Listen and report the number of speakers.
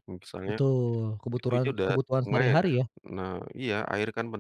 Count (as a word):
two